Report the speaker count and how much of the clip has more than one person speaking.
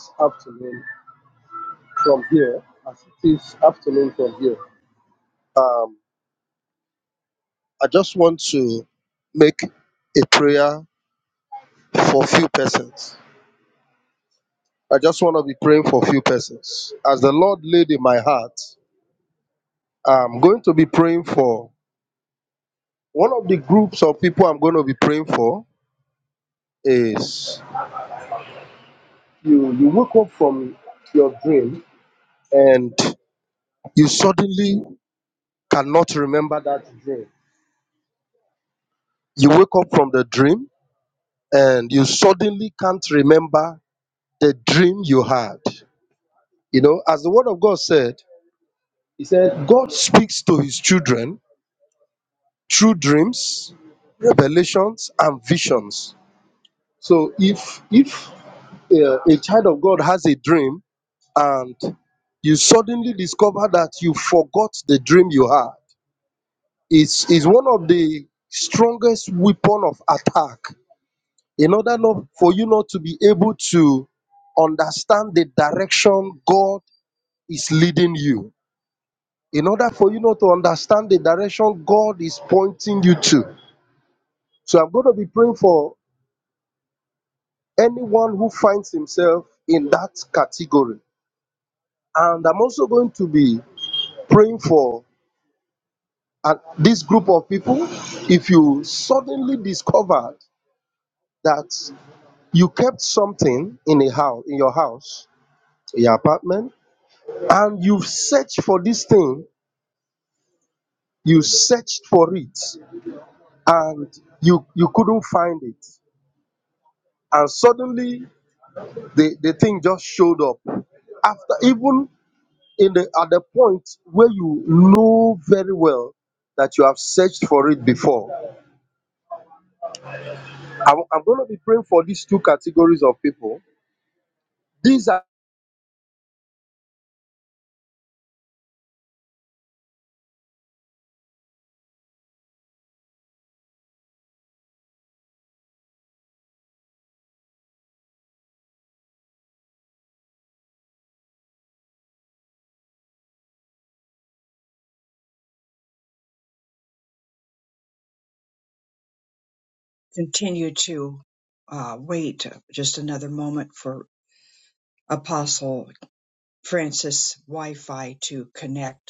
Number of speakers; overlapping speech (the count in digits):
2, no overlap